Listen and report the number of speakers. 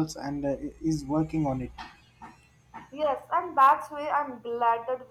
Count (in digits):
2